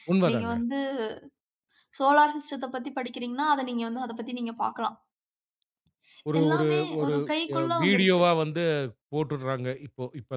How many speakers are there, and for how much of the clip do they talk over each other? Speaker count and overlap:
2, about 18%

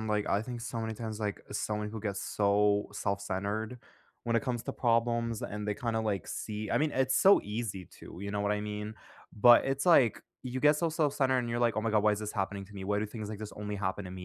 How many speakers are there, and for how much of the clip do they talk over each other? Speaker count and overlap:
1, no overlap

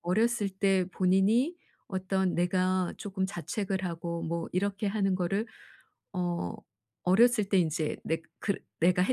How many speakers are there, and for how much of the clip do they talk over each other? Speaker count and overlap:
1, no overlap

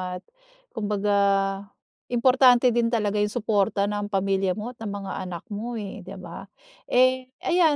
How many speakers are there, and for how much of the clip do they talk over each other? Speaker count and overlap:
1, no overlap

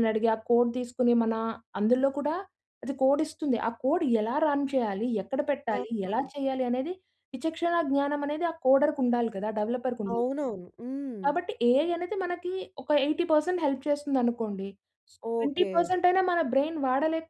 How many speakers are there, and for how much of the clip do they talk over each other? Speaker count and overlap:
2, about 7%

